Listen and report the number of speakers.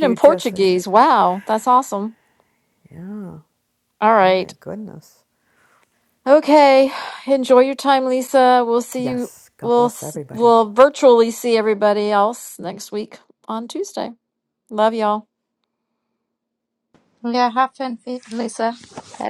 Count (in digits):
3